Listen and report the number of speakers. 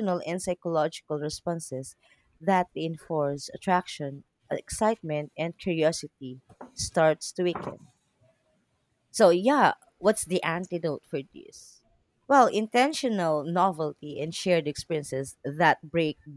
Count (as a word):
one